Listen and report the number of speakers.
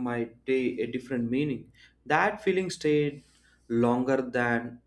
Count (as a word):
one